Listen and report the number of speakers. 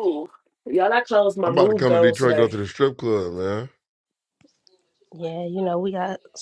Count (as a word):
three